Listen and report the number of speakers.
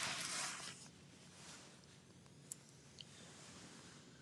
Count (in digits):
0